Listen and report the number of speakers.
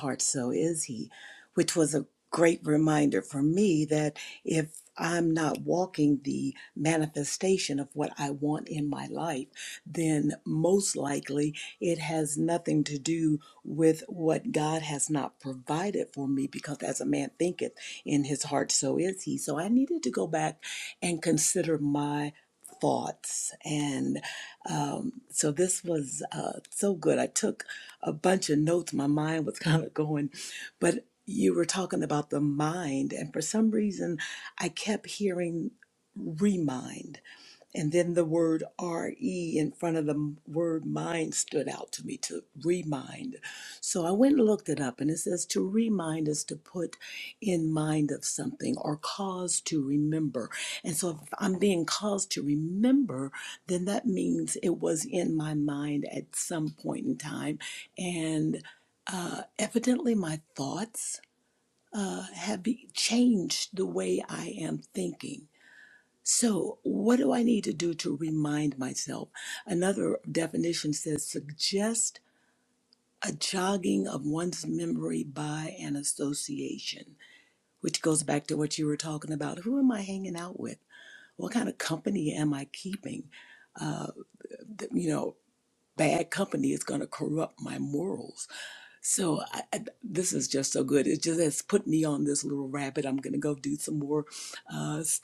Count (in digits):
1